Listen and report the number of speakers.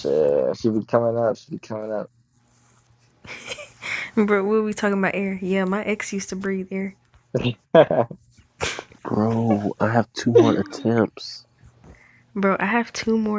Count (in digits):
3